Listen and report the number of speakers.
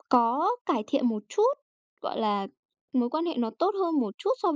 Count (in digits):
1